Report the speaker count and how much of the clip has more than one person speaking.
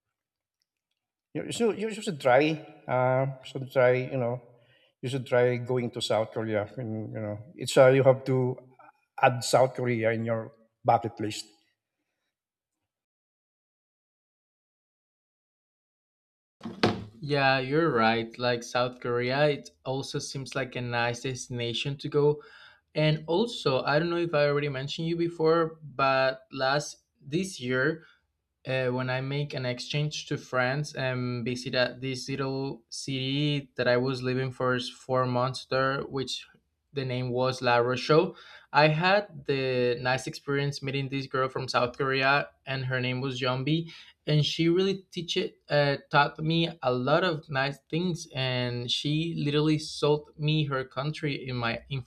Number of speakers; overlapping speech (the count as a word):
two, no overlap